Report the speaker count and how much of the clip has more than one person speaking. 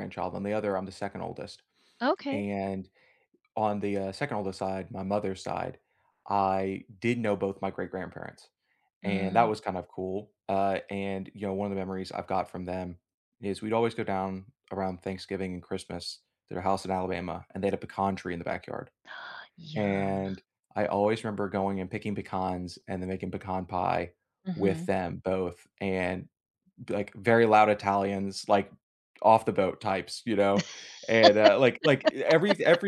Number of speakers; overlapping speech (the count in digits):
2, about 4%